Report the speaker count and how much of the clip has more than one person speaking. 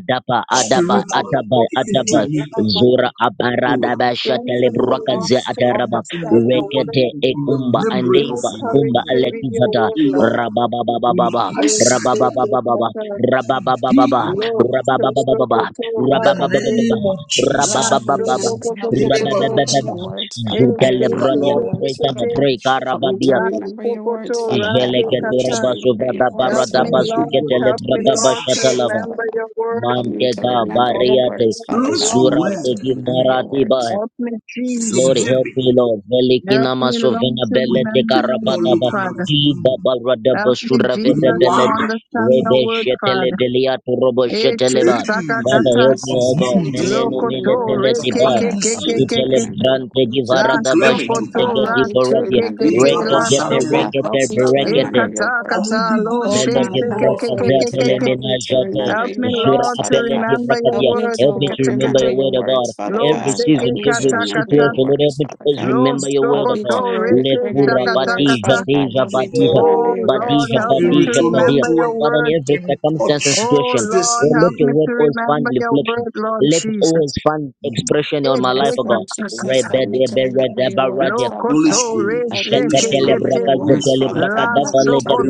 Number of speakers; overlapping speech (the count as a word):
four, about 87%